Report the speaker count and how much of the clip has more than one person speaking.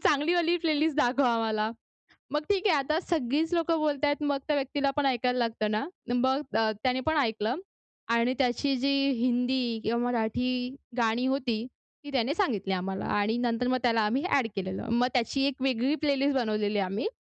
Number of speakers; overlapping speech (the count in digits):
1, no overlap